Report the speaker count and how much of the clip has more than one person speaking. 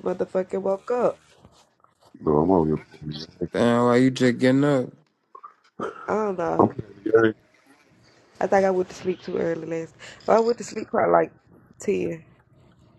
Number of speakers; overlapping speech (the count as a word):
three, about 1%